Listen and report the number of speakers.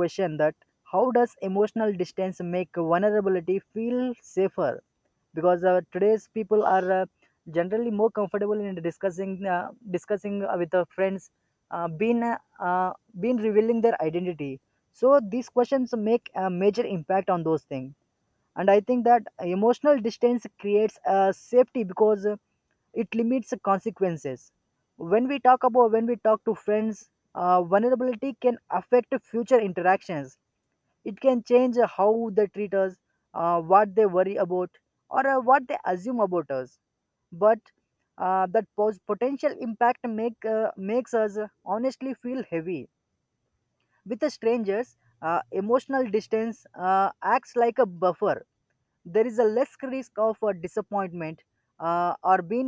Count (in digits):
1